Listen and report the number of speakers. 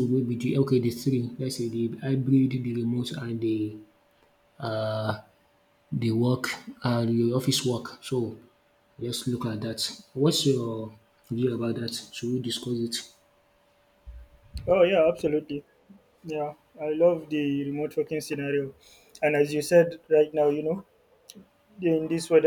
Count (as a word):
two